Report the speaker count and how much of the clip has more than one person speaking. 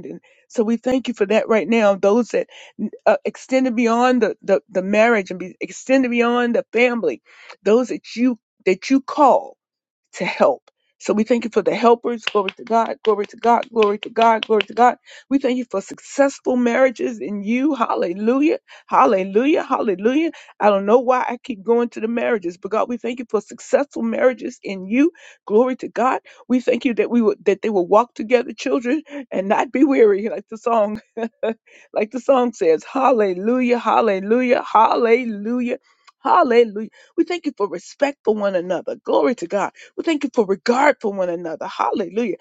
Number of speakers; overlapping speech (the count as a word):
one, no overlap